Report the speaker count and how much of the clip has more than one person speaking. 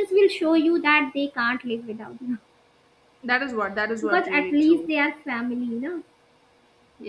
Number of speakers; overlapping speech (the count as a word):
two, about 12%